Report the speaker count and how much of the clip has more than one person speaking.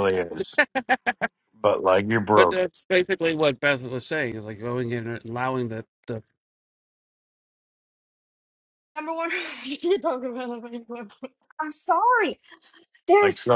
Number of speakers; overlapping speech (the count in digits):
3, about 5%